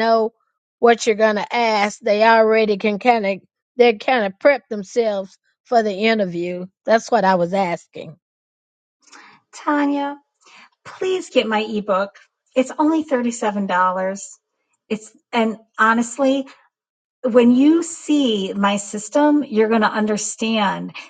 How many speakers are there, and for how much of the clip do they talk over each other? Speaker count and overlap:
two, no overlap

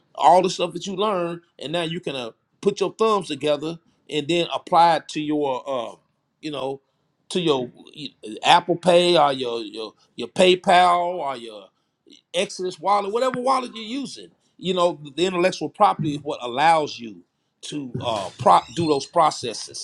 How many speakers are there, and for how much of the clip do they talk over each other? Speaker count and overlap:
one, no overlap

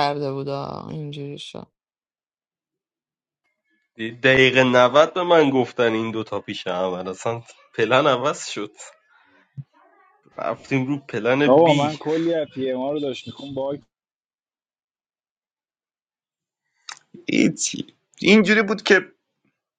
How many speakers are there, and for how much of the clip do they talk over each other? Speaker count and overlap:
four, about 3%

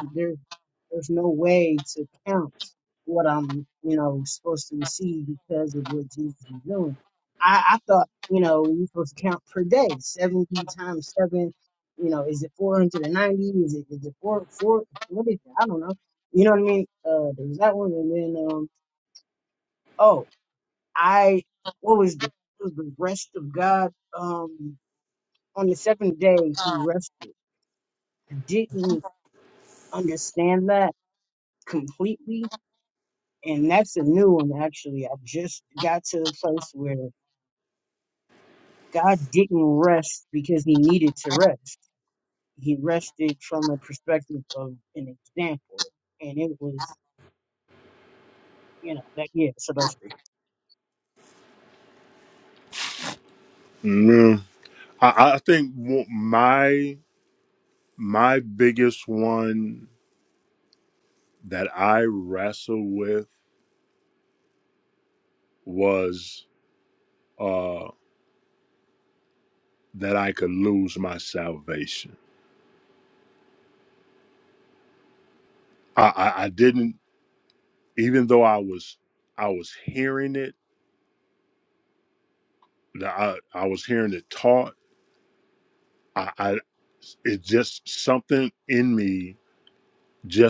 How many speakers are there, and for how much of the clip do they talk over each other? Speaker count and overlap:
two, no overlap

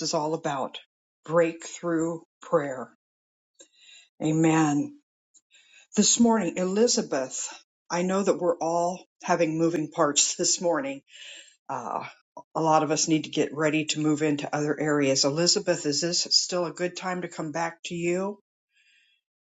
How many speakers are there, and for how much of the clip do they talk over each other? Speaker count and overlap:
one, no overlap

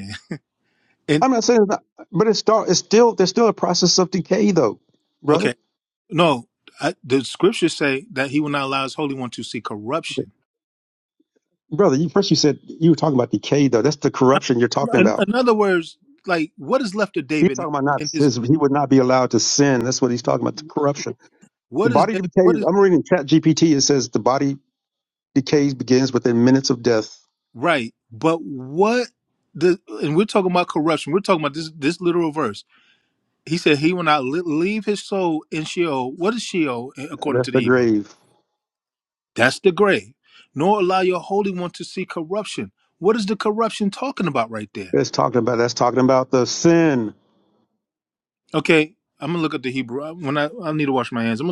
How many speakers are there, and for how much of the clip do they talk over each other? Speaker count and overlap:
two, about 5%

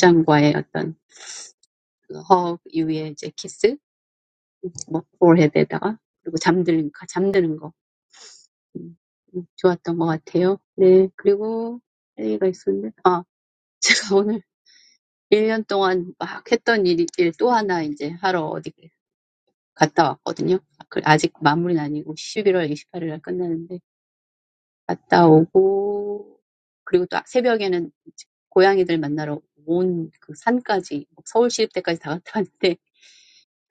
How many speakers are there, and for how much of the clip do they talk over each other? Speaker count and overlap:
one, no overlap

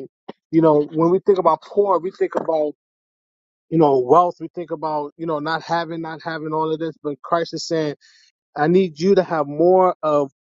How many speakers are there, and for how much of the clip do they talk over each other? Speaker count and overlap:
one, no overlap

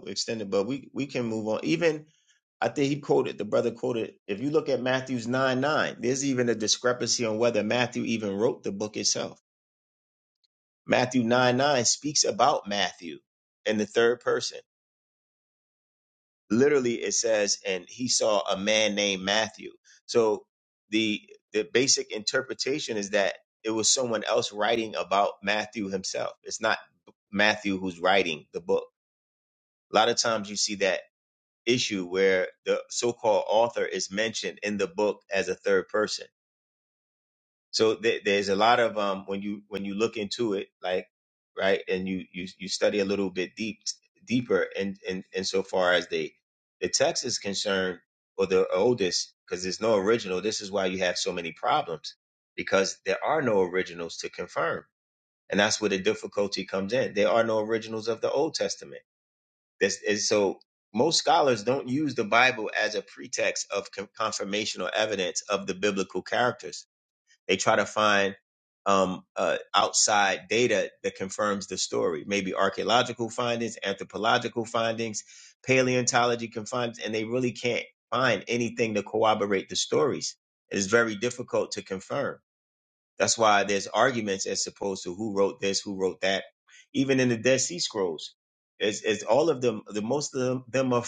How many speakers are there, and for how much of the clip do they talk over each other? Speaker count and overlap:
one, no overlap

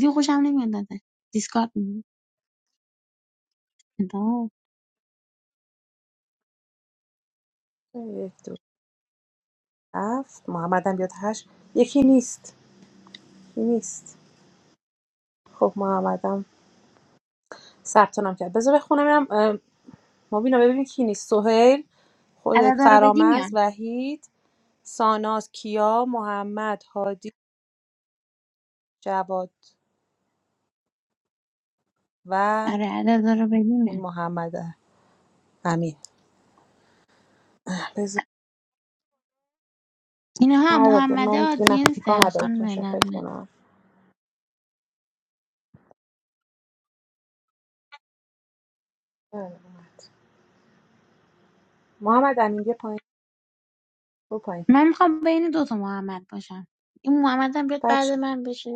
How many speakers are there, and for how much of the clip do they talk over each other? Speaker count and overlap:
two, about 7%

